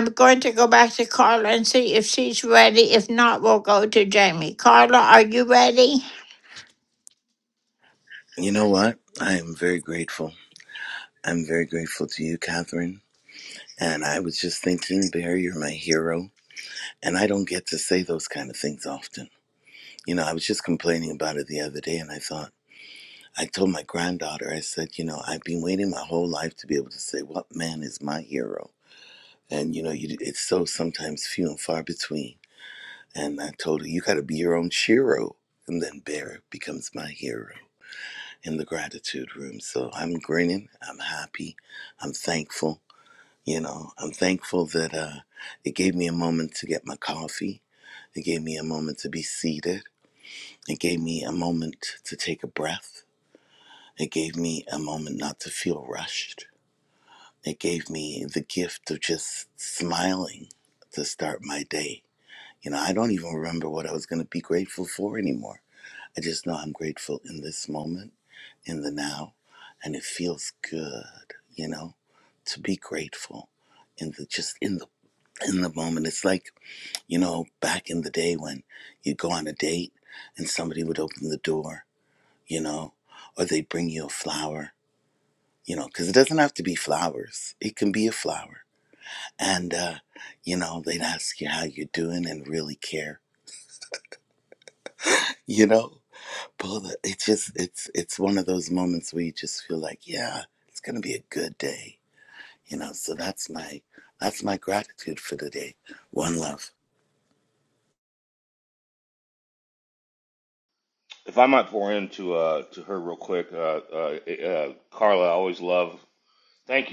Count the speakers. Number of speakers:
3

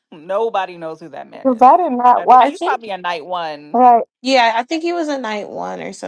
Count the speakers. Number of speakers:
3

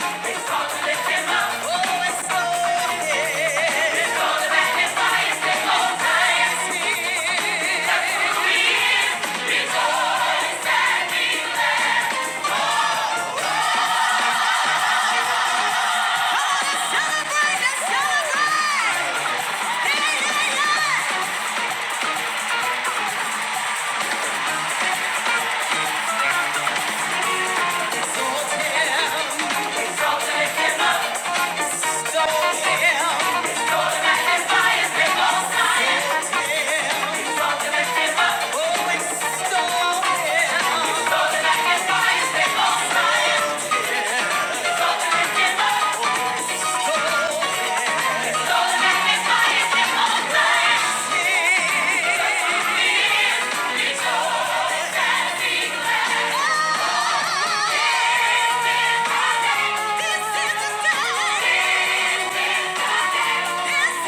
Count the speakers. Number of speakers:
0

